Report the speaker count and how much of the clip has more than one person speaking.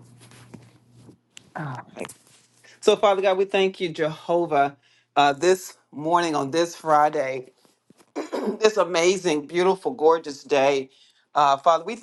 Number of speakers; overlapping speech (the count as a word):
one, no overlap